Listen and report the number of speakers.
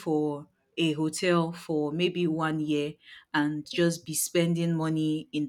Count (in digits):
1